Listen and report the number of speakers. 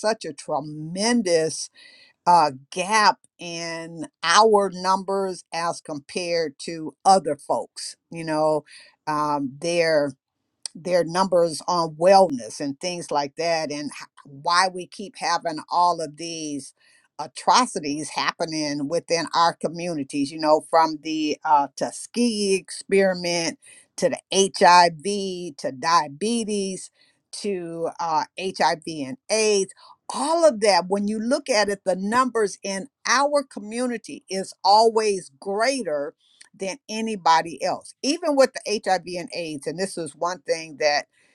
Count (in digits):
1